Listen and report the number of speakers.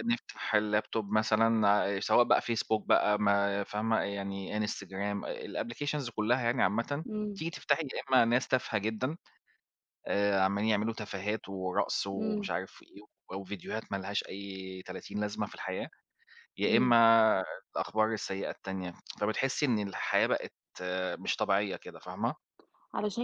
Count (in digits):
2